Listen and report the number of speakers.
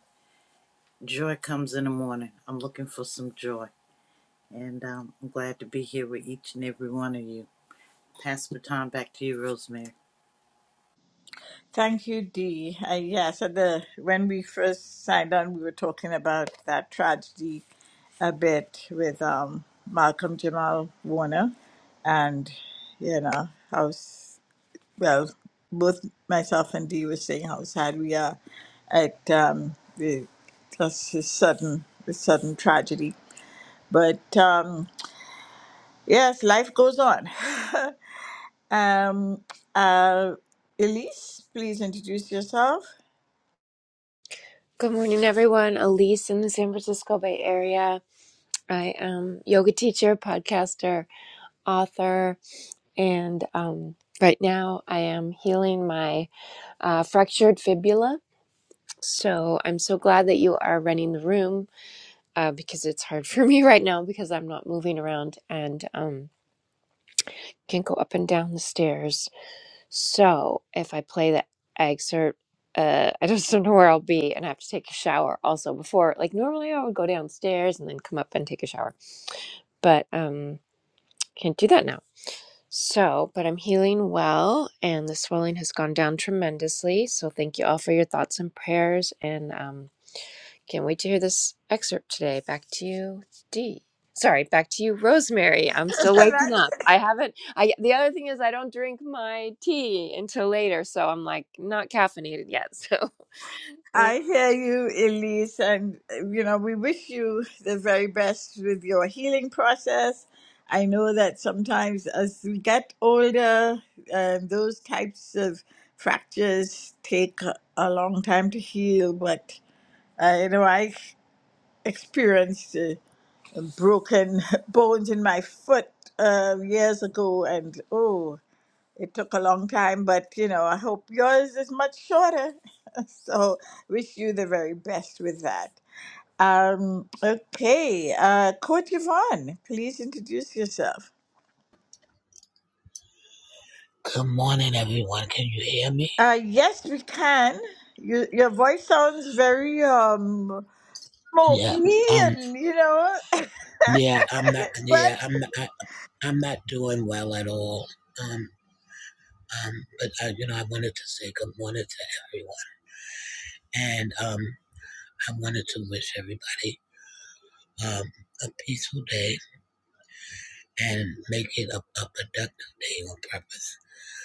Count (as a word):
four